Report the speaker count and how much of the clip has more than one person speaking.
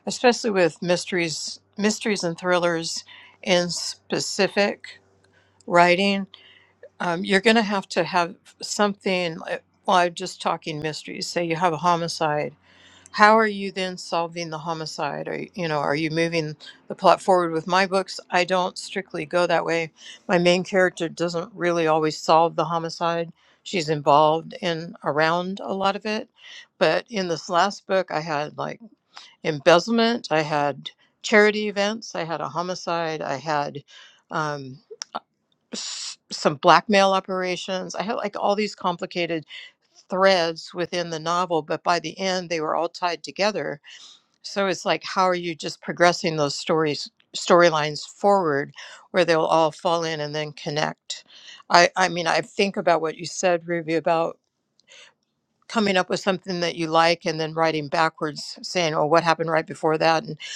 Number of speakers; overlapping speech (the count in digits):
1, no overlap